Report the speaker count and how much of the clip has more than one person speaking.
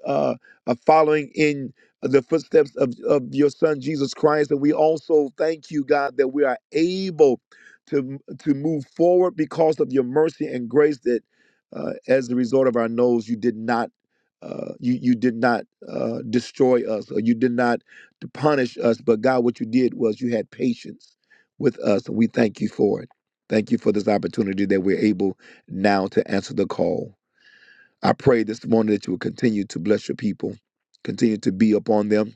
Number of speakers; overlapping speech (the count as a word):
one, no overlap